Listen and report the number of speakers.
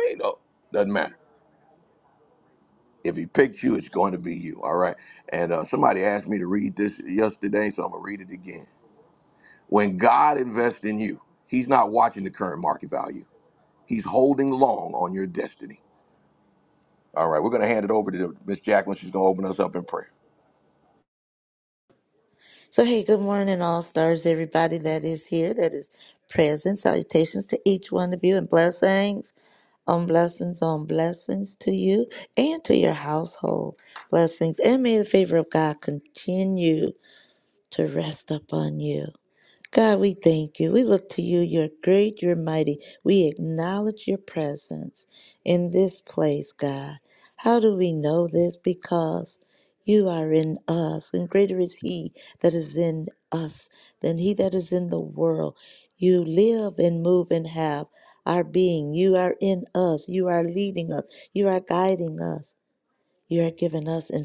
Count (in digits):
2